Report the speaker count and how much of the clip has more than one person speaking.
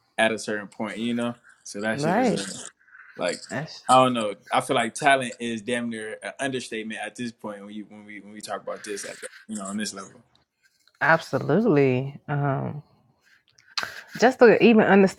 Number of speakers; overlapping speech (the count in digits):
2, about 3%